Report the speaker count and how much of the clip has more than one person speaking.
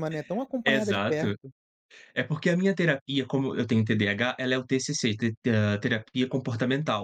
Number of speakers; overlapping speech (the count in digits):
2, about 10%